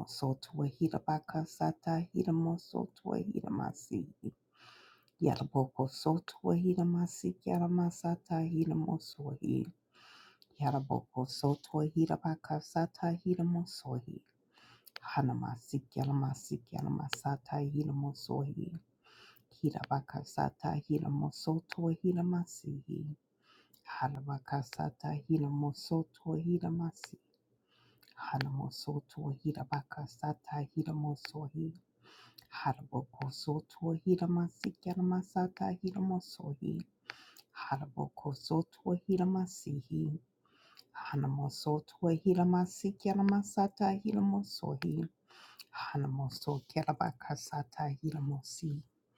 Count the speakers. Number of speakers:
1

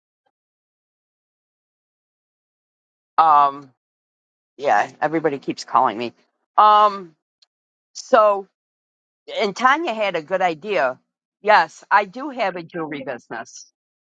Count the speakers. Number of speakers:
1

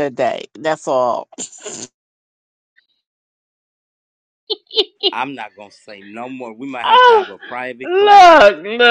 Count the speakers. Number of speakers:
3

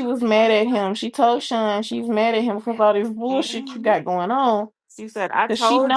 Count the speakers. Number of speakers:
2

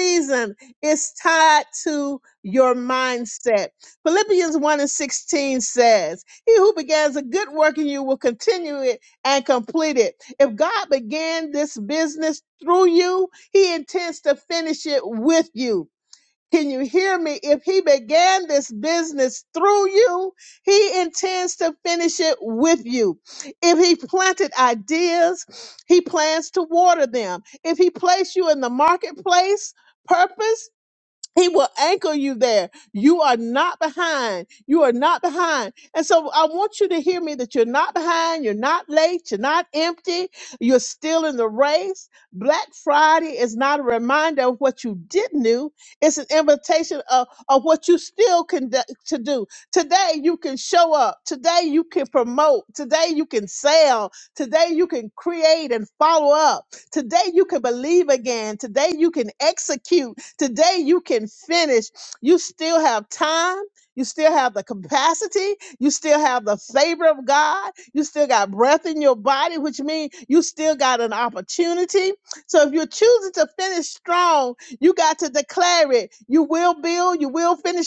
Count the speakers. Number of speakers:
1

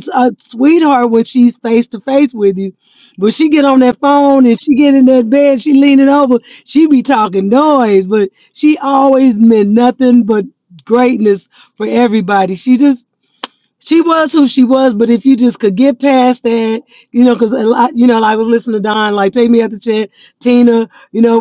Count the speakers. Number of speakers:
1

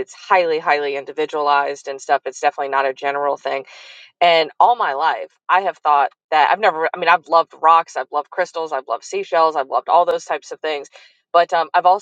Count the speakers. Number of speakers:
1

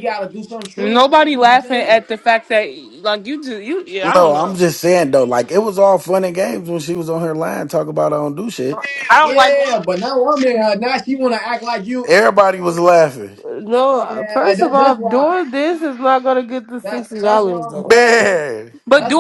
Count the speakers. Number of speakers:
4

